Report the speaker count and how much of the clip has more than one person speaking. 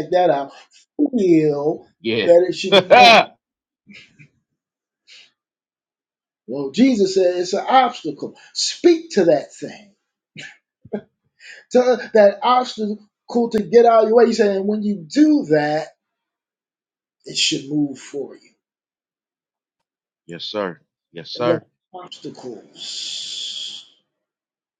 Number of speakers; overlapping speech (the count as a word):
two, about 3%